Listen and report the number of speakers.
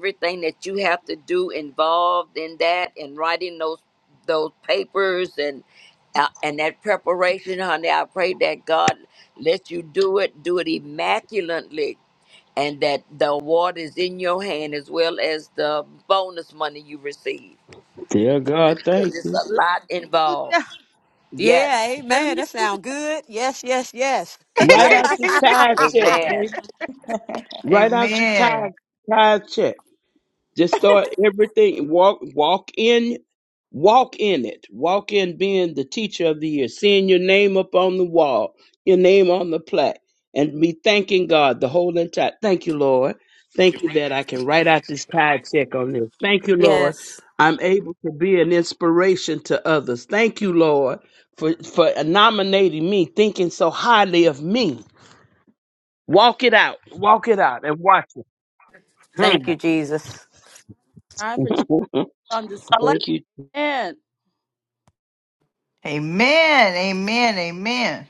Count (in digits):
5